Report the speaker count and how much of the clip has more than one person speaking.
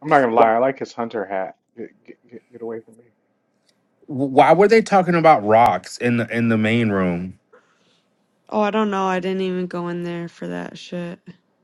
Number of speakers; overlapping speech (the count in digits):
3, about 1%